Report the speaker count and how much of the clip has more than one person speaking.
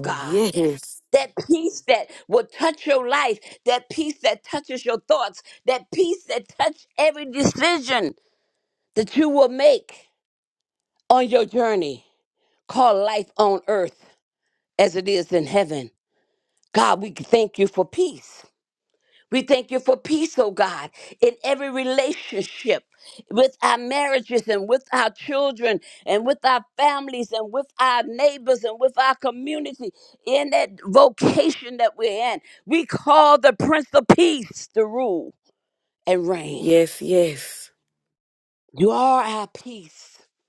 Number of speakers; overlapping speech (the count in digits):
2, about 1%